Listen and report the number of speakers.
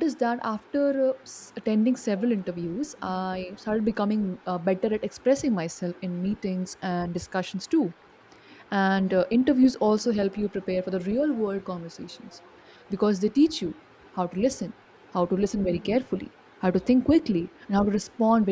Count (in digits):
1